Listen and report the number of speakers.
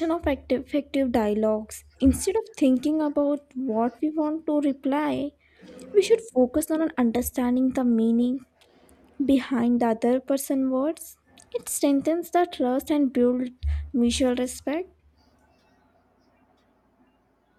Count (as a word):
one